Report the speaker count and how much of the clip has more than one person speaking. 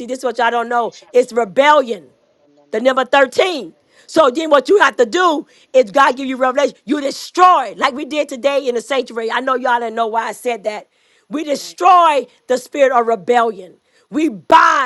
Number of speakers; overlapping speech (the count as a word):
one, no overlap